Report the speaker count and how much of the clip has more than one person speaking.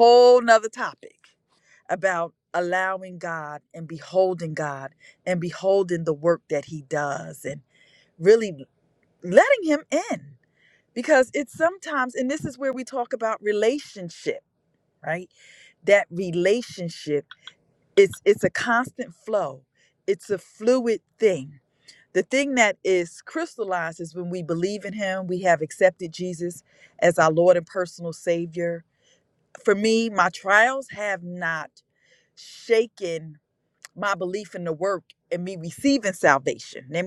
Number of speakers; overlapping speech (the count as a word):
one, no overlap